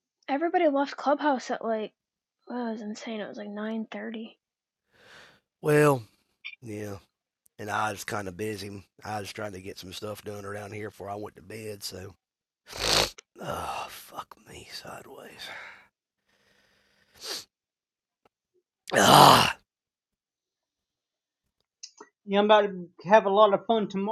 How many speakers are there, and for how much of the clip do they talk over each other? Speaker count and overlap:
3, no overlap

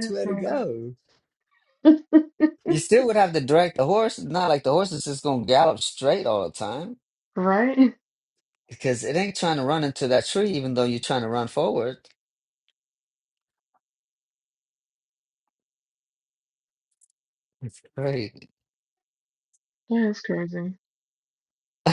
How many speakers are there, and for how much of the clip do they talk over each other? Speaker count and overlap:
2, about 3%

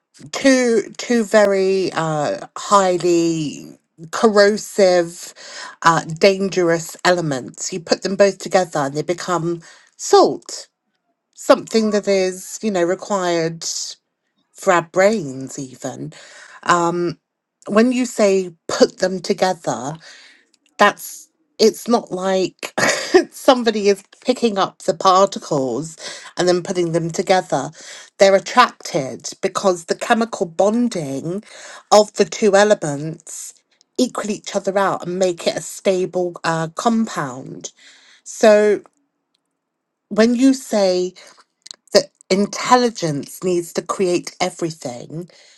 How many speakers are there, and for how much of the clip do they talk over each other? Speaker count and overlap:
1, no overlap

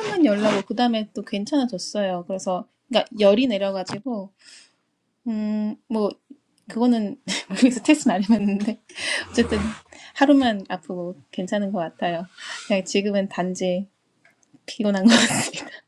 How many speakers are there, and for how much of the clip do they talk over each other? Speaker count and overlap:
1, no overlap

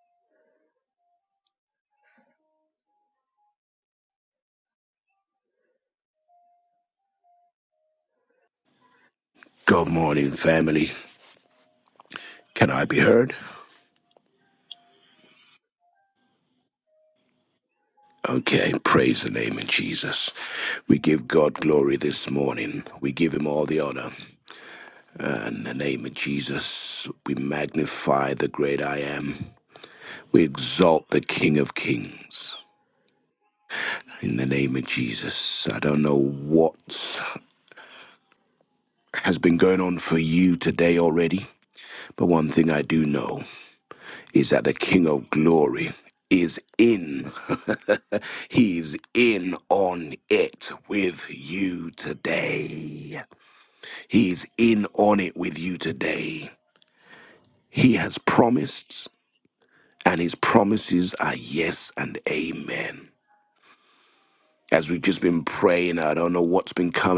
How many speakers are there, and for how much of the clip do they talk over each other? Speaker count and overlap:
1, no overlap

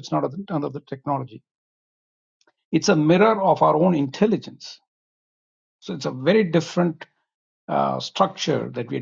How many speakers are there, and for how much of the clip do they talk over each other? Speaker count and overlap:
1, no overlap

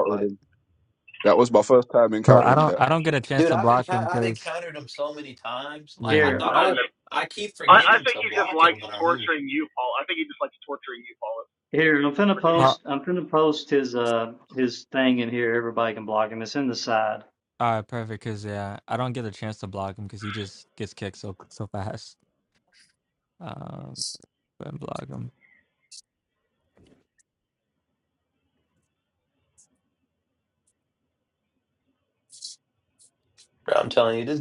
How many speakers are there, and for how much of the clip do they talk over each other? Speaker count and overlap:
5, about 14%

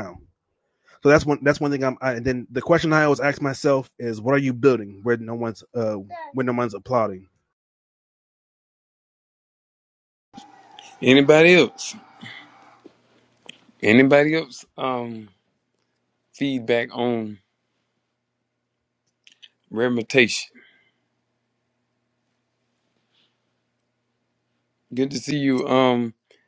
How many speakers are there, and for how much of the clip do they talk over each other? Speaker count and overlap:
2, no overlap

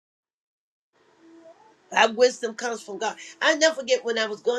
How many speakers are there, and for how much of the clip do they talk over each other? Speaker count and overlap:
1, no overlap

